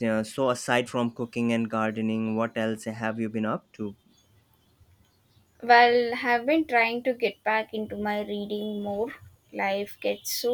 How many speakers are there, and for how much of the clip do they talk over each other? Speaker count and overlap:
2, no overlap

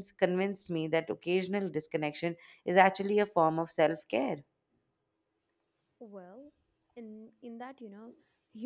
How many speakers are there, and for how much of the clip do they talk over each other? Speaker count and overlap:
2, no overlap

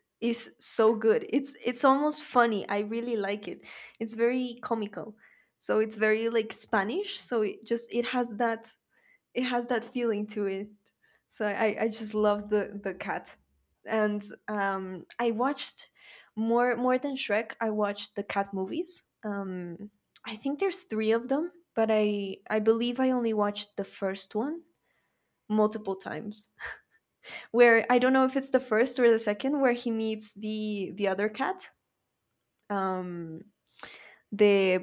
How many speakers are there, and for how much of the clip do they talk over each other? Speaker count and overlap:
1, no overlap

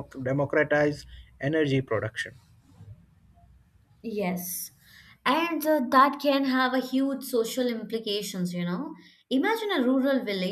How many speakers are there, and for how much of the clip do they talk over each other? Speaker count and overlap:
2, no overlap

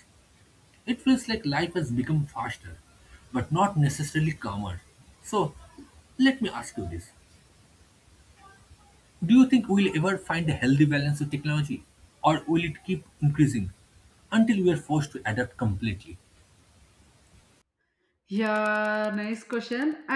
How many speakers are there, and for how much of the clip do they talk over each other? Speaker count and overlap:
2, no overlap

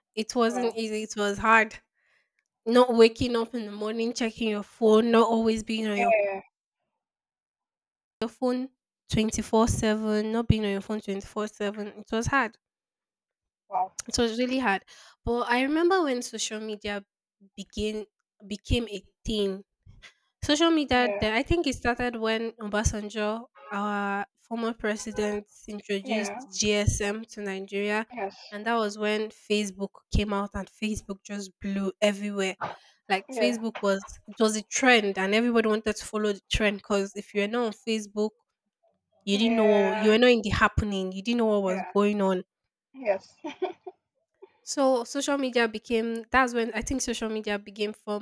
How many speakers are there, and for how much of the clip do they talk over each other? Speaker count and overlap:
2, about 6%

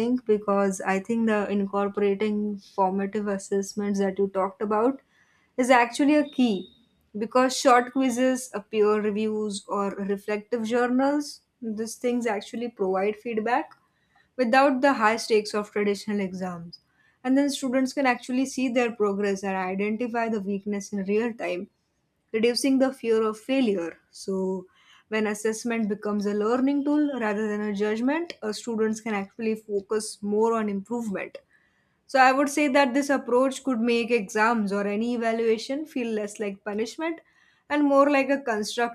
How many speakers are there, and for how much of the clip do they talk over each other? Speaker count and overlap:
1, no overlap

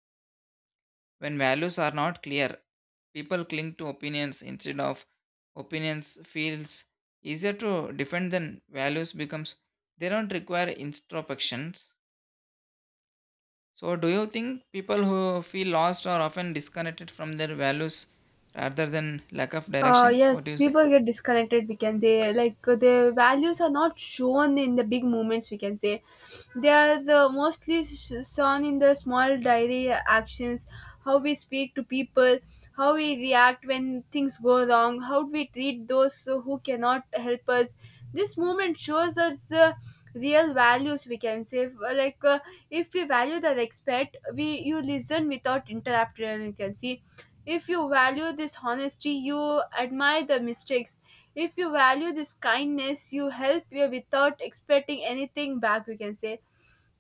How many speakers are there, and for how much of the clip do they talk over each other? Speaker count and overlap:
2, about 2%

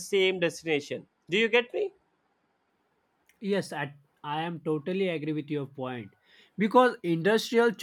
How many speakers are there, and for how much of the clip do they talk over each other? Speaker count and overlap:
2, no overlap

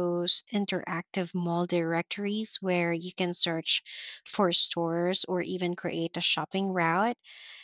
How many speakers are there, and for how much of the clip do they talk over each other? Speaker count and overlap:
1, no overlap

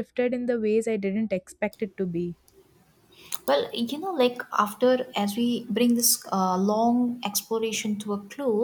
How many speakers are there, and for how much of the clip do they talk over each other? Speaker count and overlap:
2, no overlap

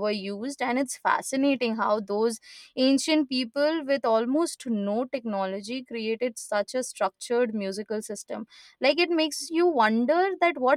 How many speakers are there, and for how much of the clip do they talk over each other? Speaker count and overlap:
1, no overlap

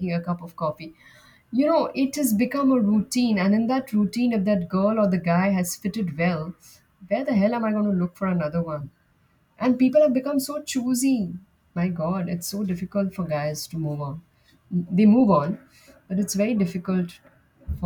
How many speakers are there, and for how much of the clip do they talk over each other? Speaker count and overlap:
1, no overlap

